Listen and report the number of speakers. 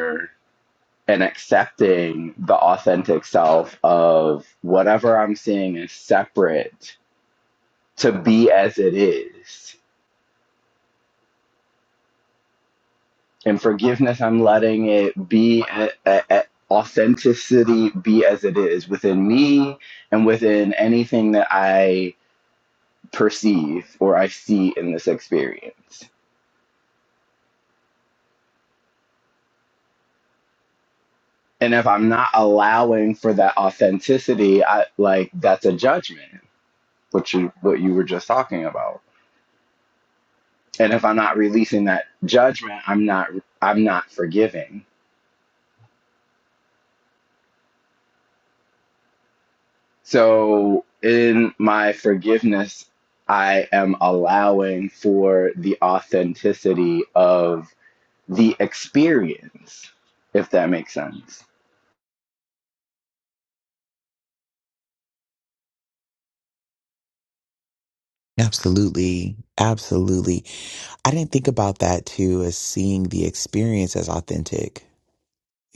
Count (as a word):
two